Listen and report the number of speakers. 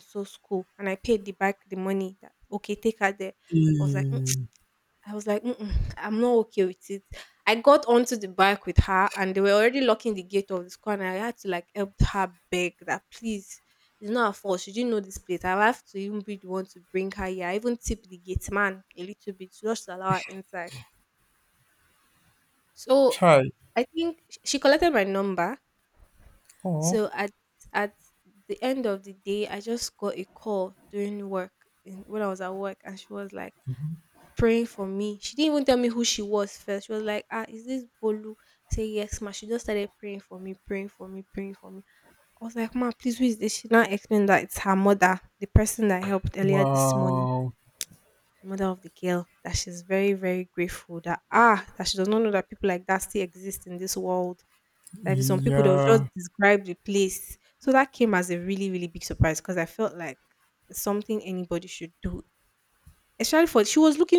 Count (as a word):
two